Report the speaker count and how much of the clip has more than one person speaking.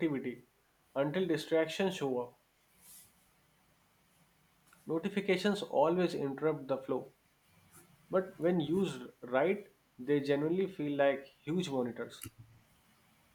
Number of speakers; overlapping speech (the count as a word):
one, no overlap